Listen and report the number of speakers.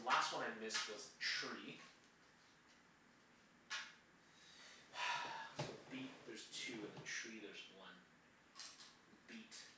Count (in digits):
1